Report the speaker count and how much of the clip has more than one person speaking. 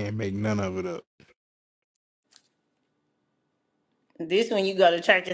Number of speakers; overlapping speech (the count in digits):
2, no overlap